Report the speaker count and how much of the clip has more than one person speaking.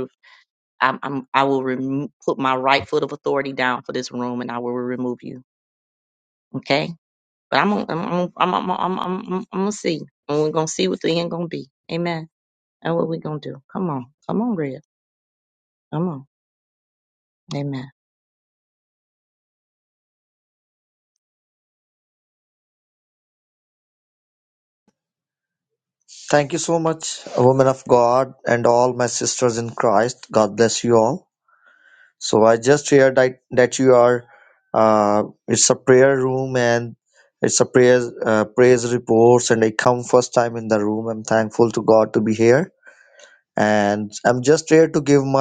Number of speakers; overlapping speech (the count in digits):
2, no overlap